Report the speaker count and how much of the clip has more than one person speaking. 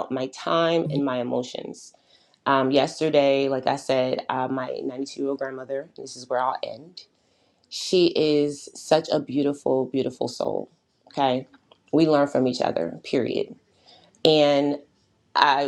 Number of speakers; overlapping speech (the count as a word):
one, no overlap